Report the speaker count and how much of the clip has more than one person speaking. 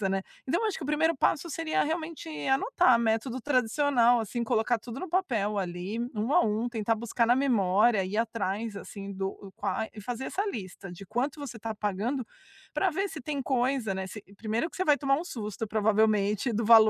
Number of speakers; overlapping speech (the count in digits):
1, no overlap